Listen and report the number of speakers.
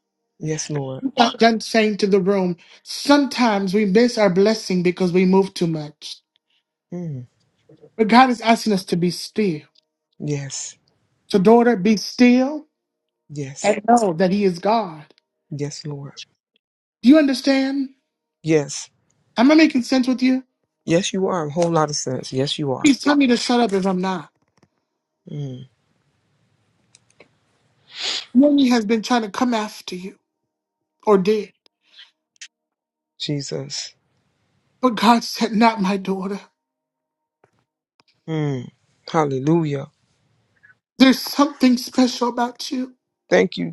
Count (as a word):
two